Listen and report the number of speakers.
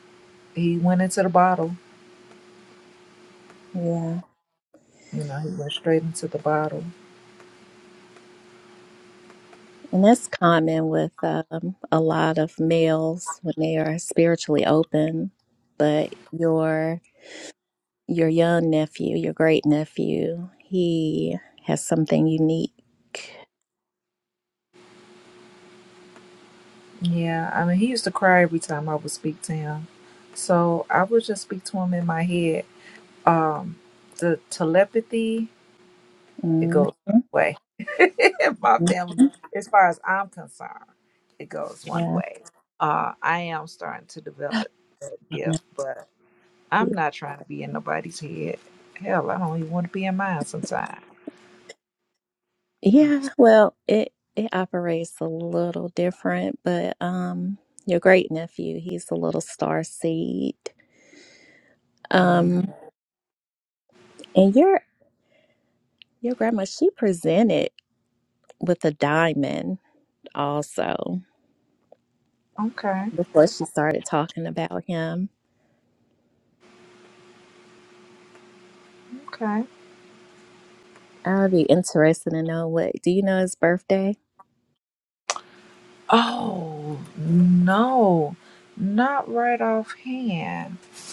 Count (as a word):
two